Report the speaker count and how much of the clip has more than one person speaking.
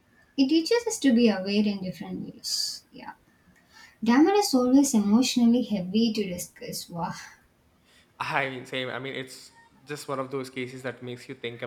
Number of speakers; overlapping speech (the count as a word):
two, no overlap